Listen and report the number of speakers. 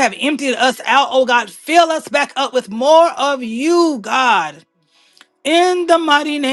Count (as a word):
one